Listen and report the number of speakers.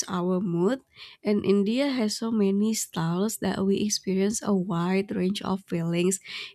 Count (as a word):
one